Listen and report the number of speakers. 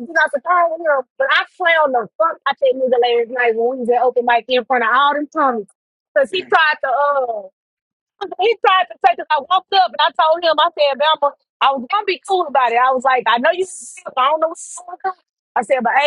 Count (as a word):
one